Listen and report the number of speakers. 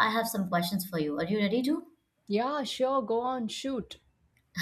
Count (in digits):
2